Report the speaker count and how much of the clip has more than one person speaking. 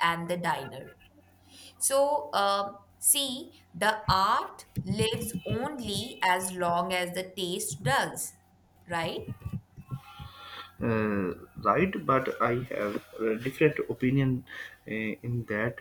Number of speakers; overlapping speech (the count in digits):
2, no overlap